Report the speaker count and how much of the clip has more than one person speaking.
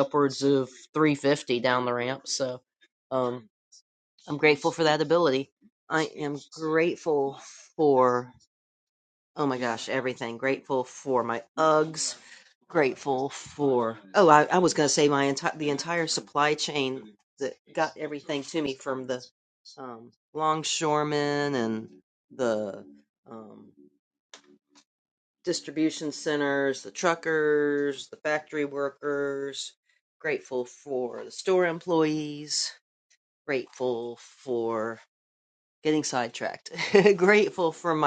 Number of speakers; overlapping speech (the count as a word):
one, no overlap